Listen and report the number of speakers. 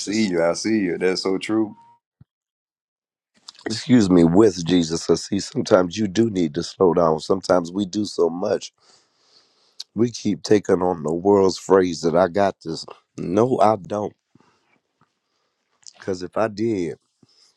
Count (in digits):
2